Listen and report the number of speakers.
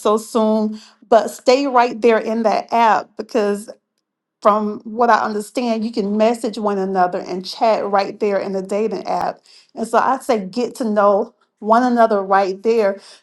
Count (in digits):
1